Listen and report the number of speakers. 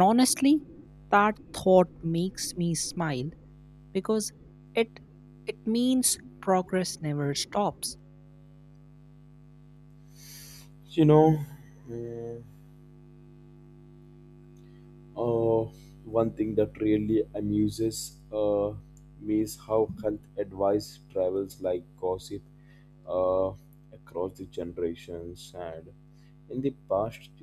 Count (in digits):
2